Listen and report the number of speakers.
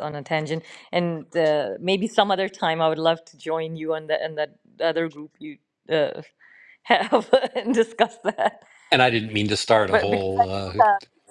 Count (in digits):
2